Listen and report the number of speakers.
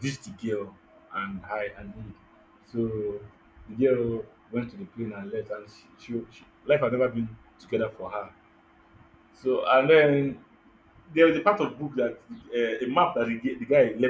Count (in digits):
1